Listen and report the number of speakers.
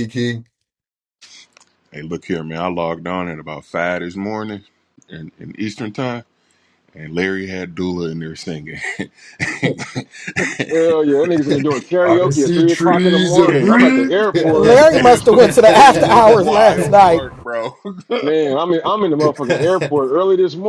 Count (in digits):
4